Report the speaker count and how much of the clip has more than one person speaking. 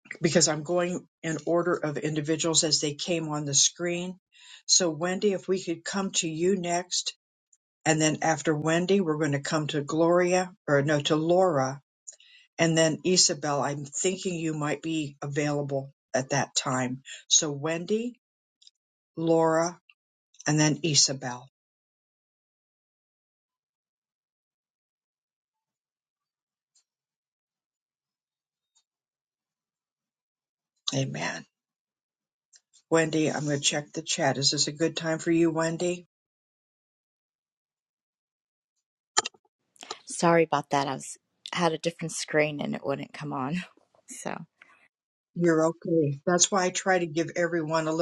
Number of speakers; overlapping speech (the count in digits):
2, no overlap